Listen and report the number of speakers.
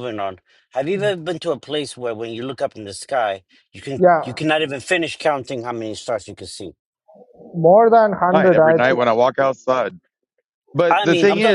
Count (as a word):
three